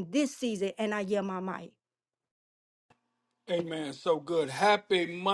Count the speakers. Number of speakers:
two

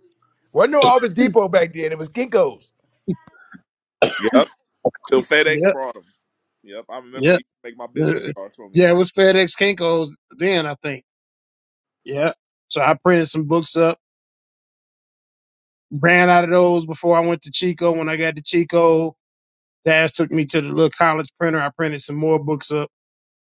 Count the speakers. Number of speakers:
three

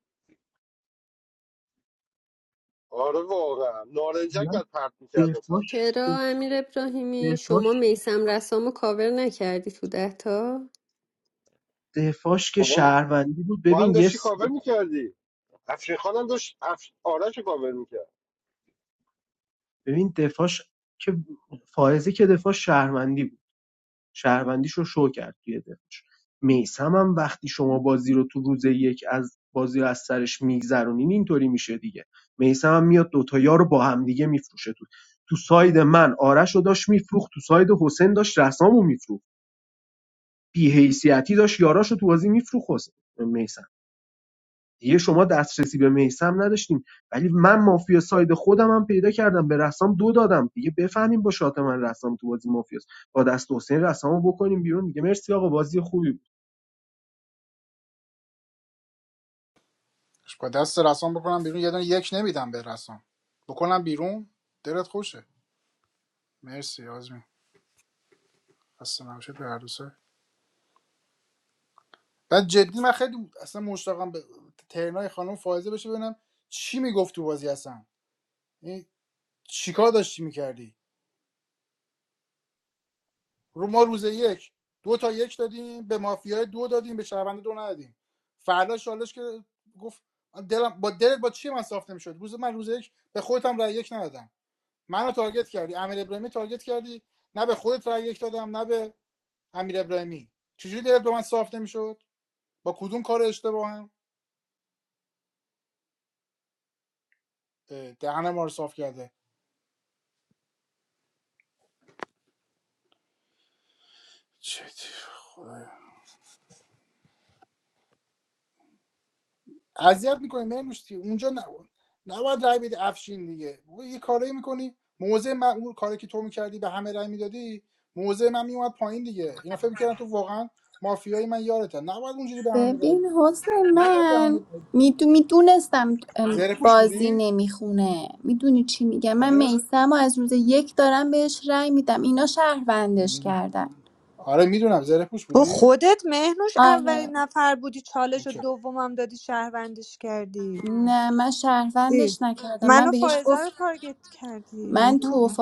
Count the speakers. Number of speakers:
six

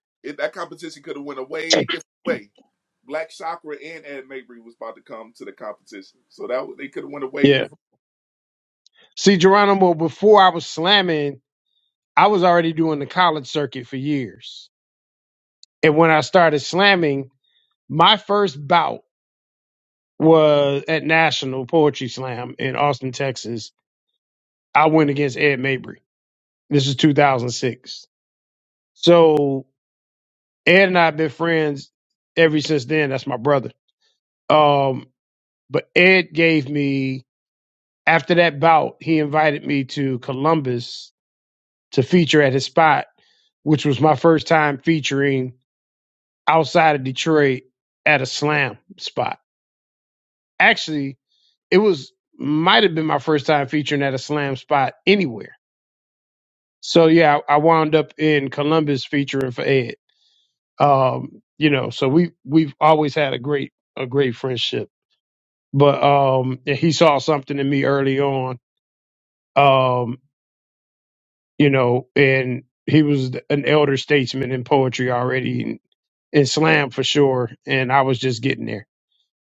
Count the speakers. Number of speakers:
two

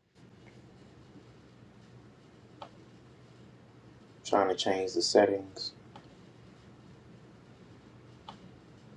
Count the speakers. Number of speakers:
one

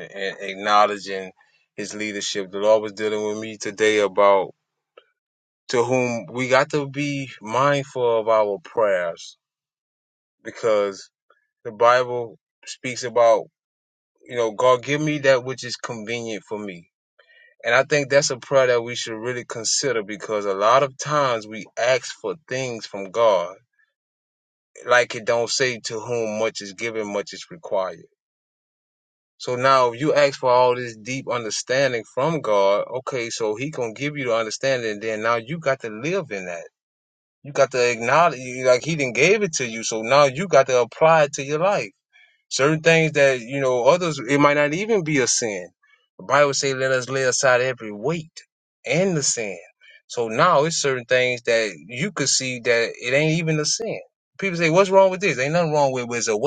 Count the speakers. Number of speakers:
one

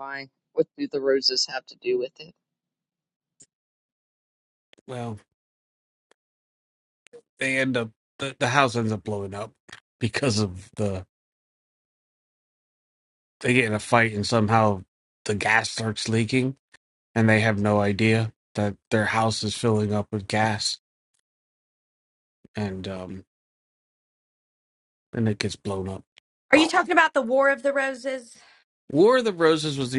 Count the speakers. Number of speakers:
three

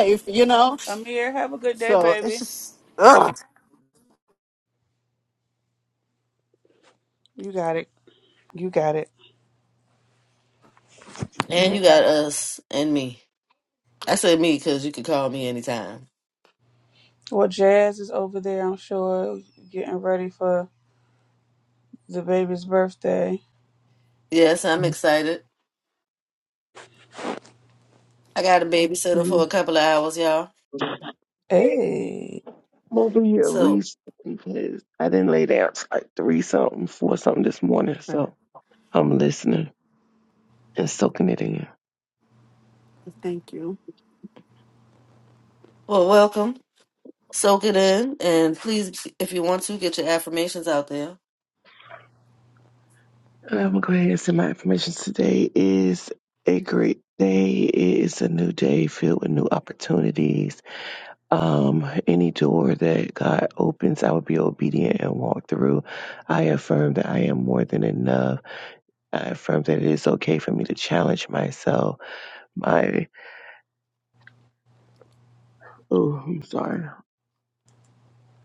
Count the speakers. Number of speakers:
four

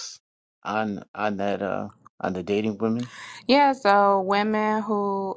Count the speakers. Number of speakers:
two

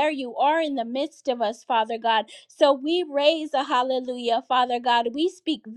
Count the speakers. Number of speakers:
one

